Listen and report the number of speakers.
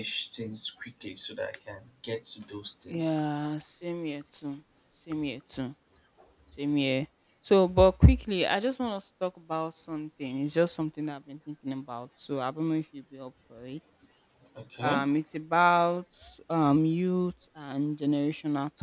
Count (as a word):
two